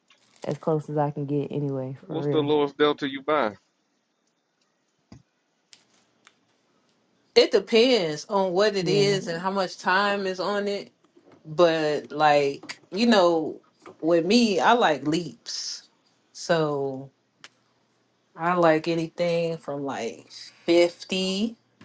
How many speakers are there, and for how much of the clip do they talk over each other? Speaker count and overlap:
3, about 3%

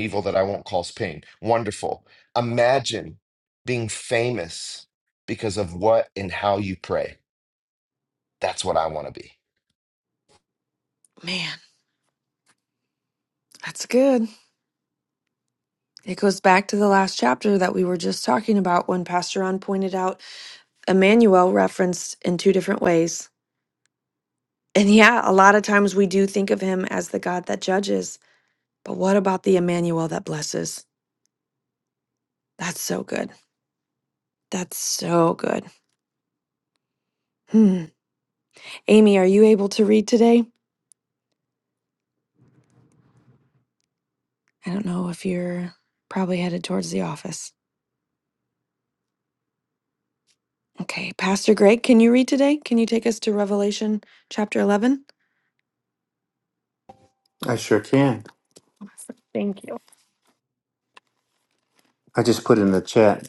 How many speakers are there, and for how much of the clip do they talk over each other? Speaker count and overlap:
3, no overlap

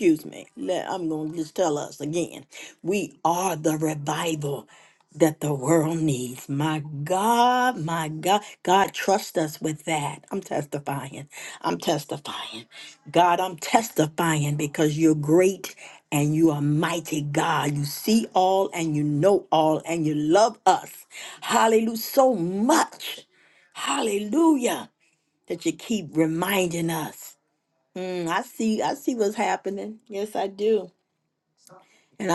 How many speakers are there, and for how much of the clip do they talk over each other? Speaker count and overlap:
1, no overlap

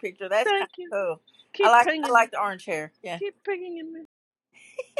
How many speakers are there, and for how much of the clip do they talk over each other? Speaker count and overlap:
2, about 22%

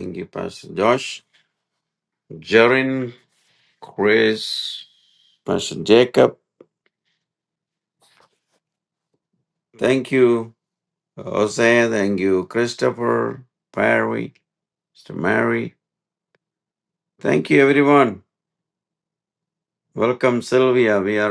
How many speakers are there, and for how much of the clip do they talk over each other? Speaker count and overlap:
1, no overlap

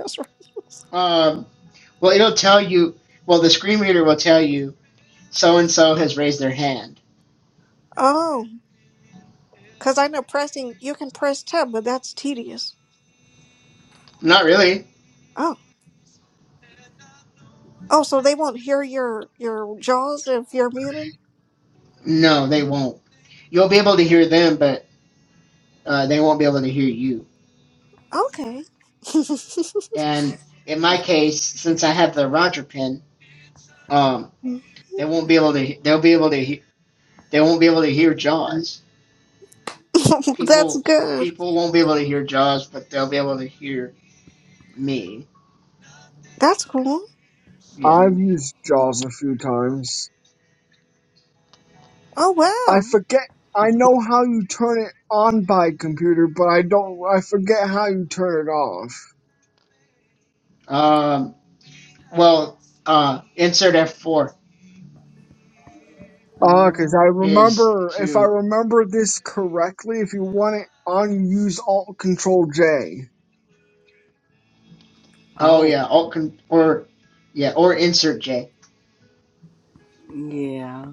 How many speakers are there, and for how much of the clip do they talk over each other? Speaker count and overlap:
4, about 3%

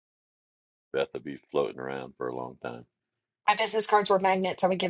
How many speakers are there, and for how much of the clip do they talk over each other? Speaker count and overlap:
2, no overlap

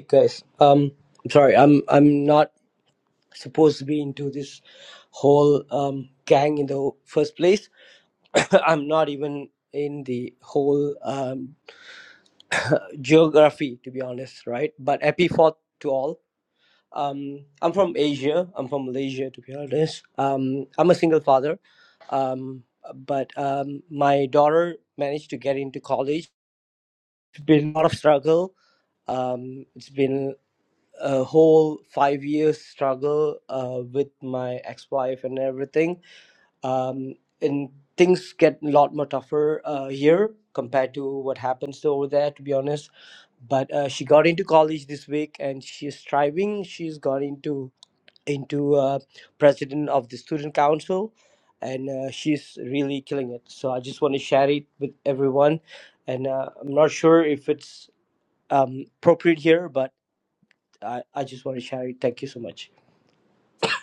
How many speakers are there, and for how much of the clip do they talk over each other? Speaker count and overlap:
1, no overlap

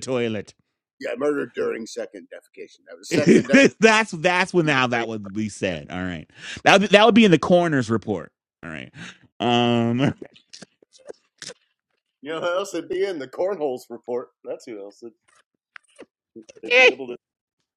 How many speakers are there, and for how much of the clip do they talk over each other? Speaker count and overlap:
2, no overlap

